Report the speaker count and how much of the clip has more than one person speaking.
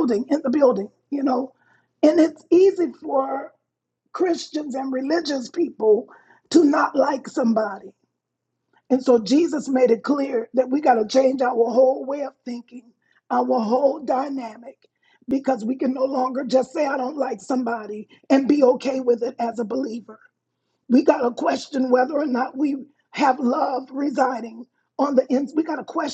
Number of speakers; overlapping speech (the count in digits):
1, no overlap